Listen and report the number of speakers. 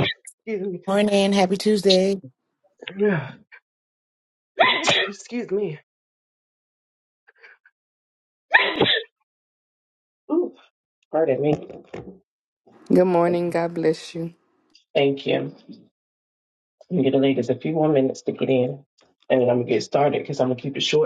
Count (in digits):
3